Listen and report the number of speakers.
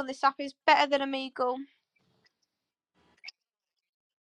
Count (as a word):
one